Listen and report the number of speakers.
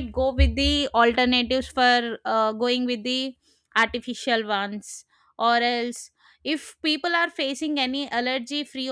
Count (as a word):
one